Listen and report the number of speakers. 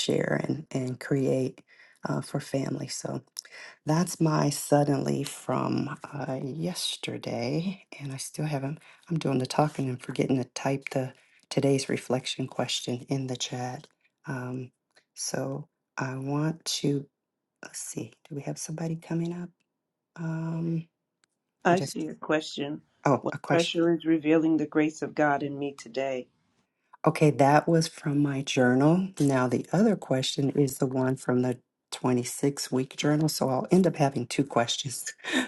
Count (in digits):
2